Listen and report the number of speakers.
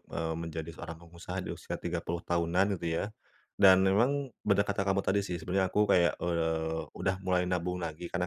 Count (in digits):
1